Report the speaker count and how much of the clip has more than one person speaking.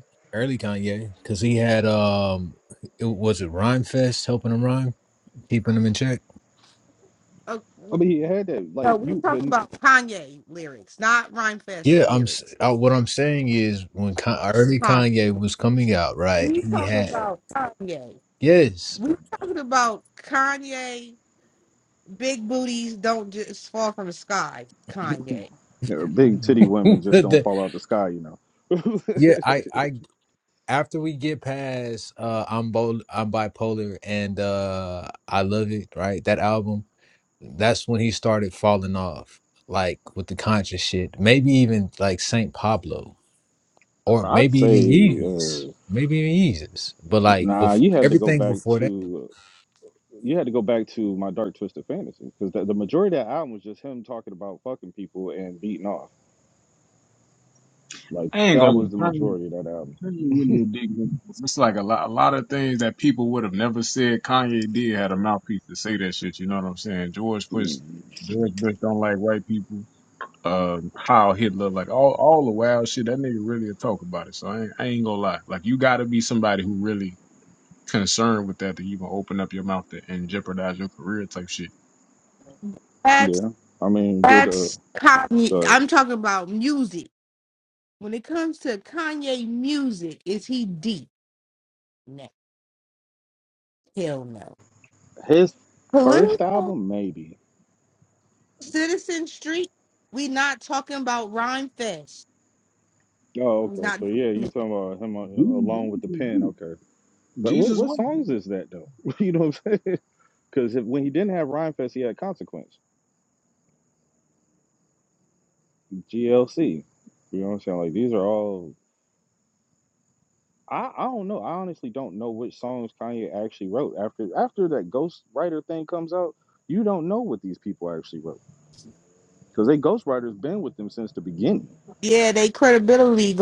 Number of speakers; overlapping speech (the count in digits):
4, about 7%